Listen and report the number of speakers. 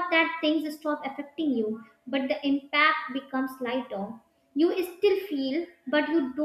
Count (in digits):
1